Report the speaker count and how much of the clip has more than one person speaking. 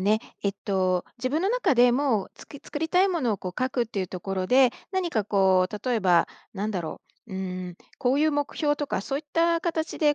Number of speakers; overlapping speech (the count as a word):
one, no overlap